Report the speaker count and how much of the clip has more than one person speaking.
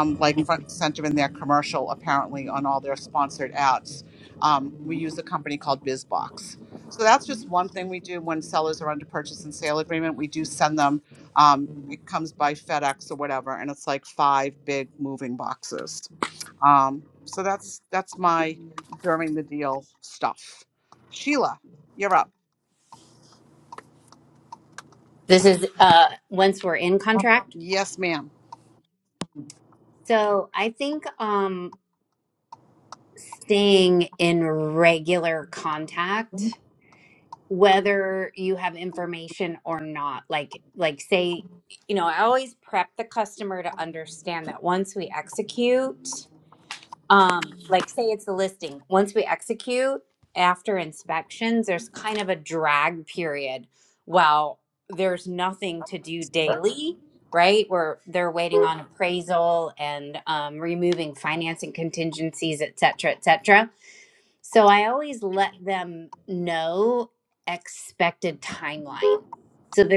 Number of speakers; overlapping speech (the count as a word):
two, no overlap